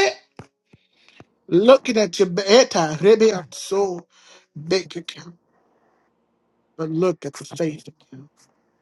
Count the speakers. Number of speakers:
1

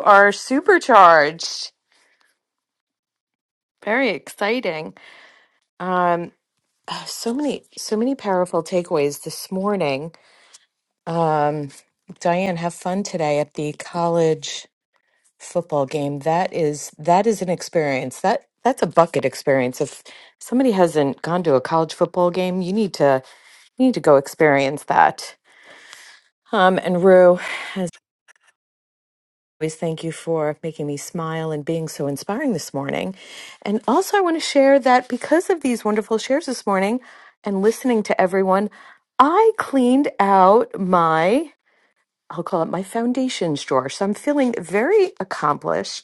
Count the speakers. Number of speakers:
1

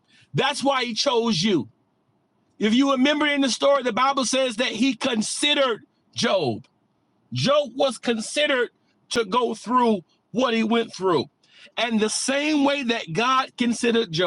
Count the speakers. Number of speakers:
1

